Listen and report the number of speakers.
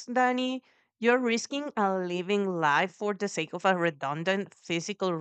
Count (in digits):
1